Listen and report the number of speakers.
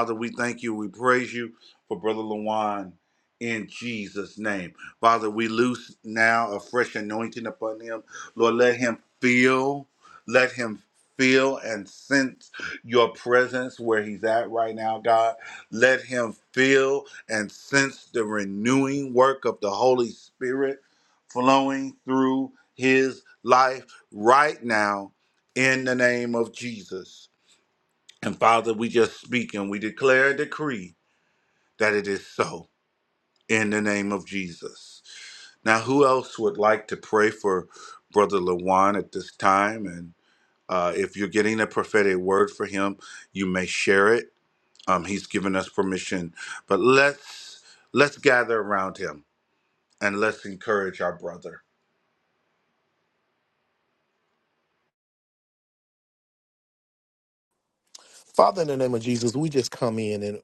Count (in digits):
2